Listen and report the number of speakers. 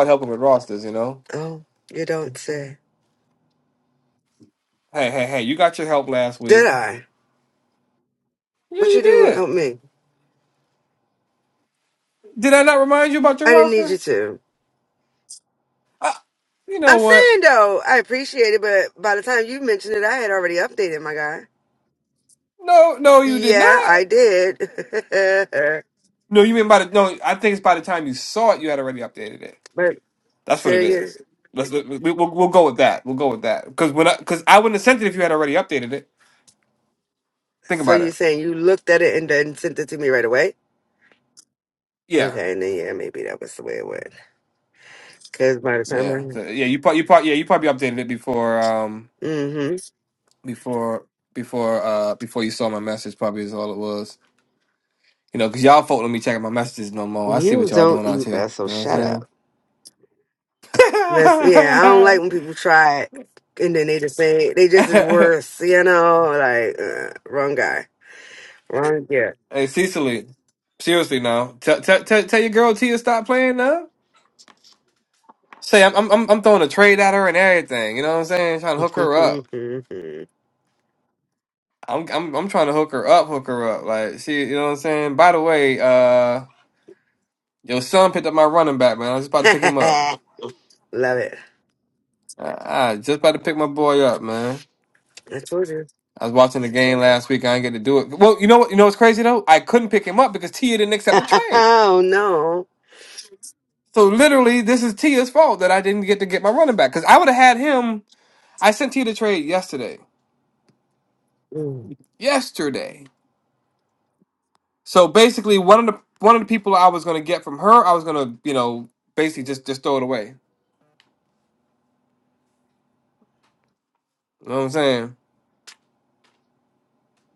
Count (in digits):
2